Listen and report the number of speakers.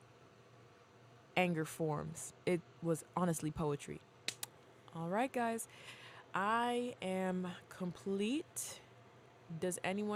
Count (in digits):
1